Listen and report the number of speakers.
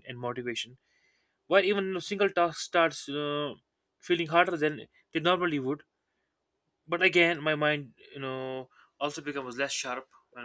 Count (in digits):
1